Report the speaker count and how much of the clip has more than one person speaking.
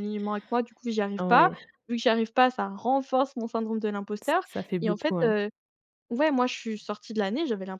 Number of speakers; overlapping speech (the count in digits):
2, about 15%